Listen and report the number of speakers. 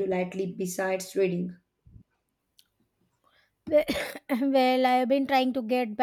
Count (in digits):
2